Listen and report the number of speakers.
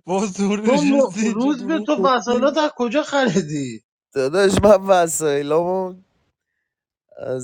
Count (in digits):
3